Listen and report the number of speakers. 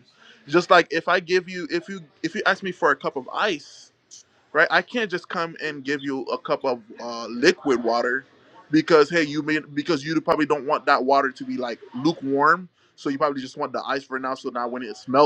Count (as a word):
one